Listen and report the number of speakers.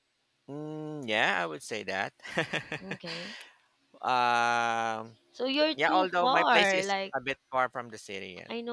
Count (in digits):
2